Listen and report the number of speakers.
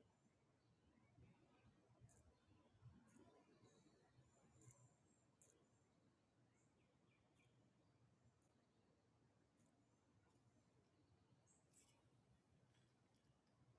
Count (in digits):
0